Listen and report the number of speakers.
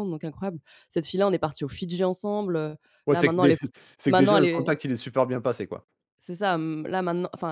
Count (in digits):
2